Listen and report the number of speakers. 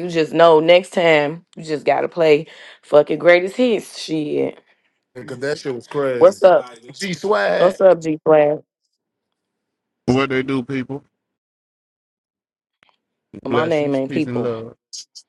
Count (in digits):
3